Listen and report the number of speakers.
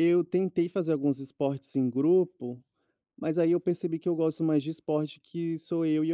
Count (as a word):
one